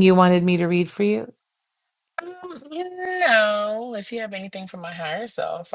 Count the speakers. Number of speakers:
2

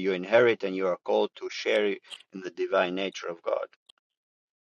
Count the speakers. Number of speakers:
1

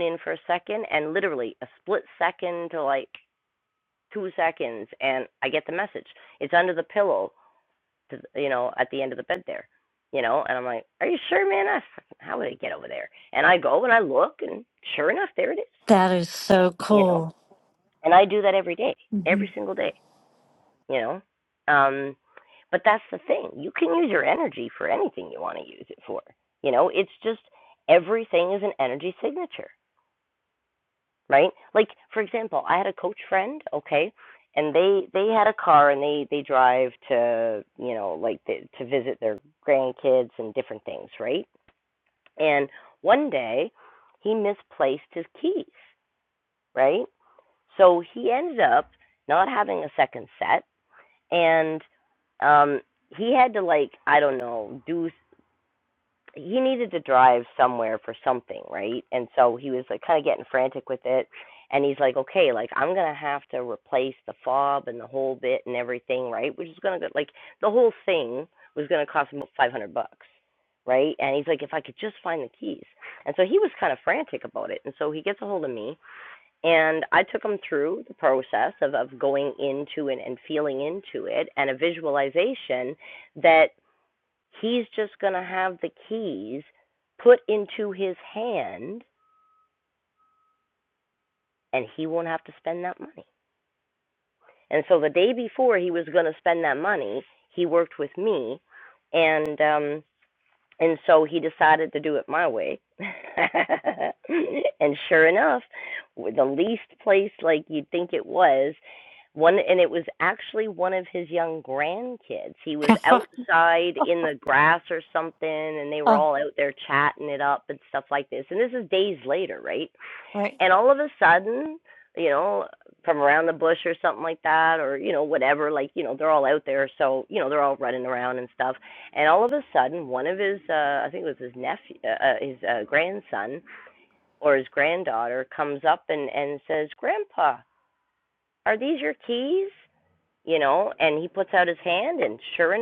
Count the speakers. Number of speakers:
2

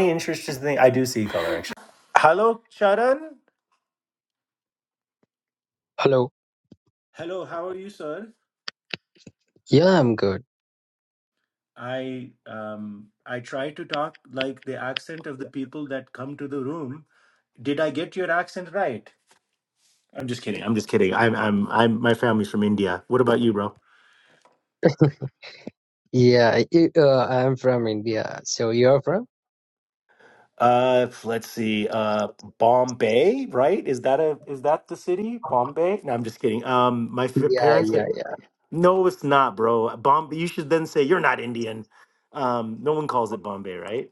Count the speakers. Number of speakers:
2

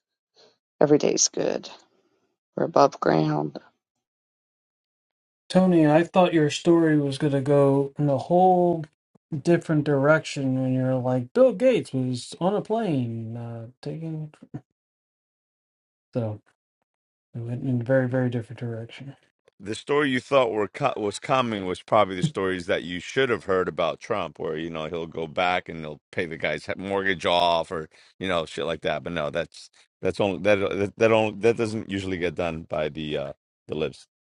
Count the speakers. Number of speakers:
3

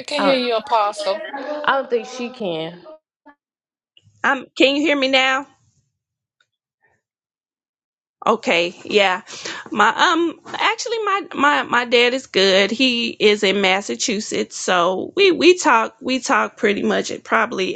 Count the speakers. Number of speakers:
3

